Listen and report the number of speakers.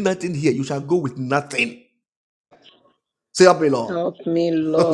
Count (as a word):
two